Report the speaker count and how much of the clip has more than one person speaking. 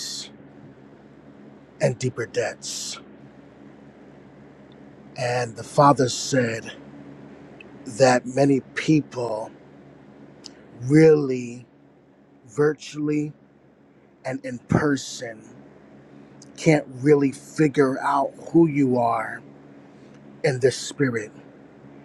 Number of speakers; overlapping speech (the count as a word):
one, no overlap